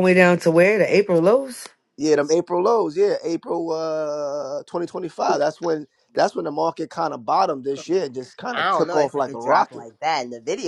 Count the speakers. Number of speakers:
3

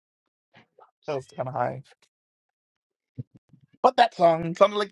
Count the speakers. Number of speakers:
1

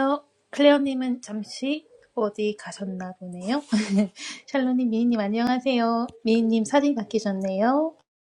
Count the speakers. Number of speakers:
1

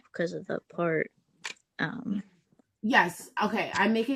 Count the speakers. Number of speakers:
2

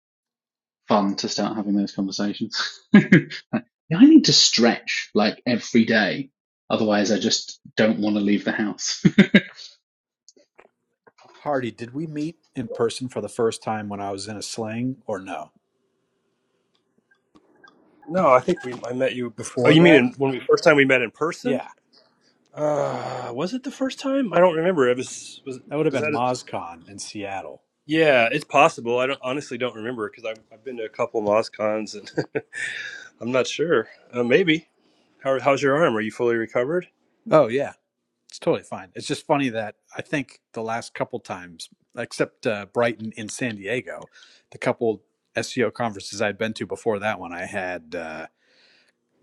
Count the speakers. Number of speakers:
3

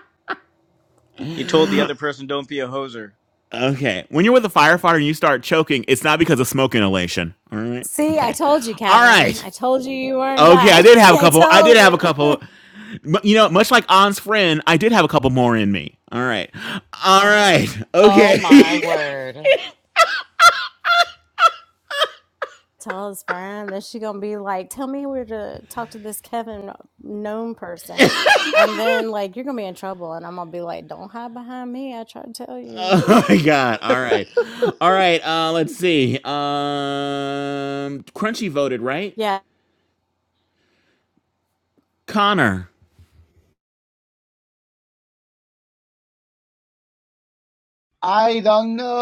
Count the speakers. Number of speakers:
5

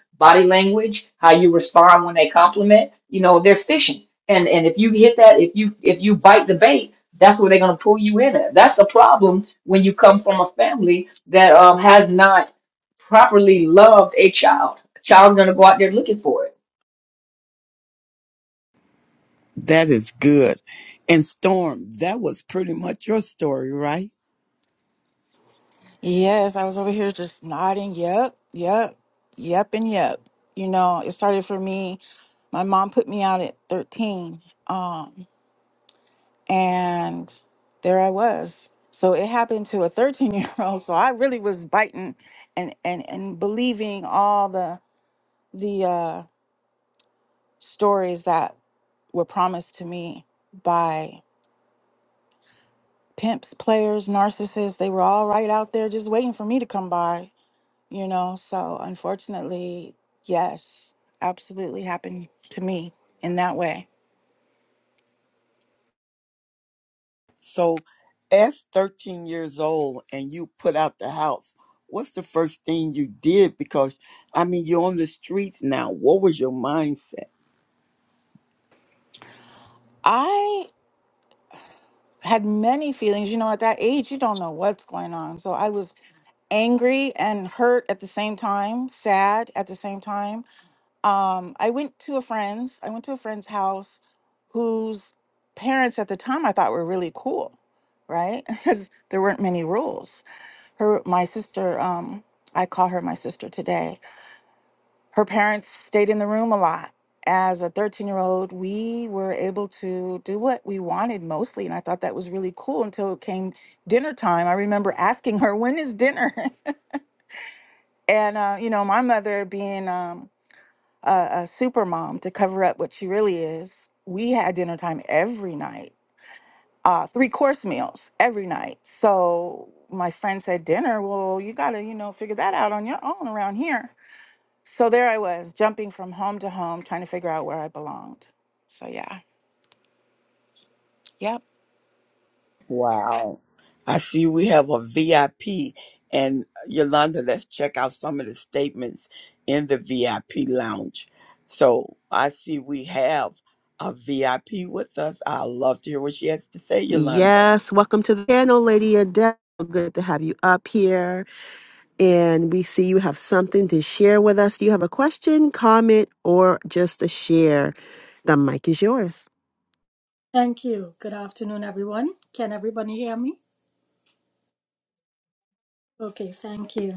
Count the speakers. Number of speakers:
5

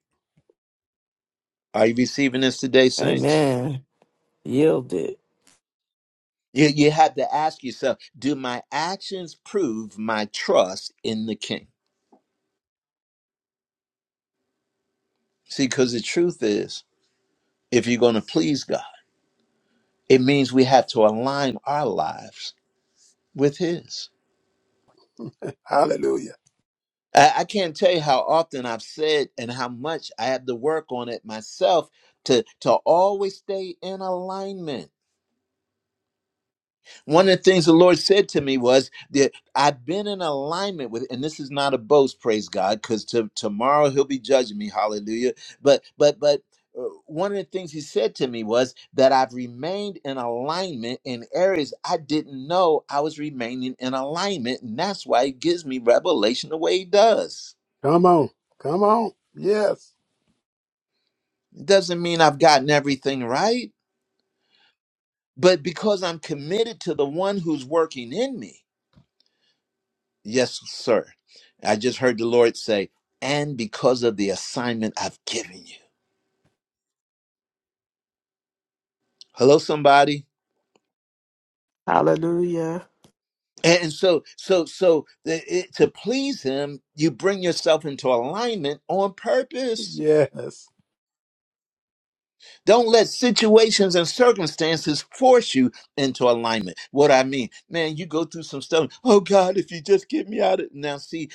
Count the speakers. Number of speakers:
3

